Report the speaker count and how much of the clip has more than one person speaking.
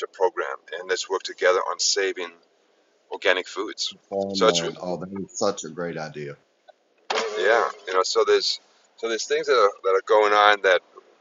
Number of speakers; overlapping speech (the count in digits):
2, about 3%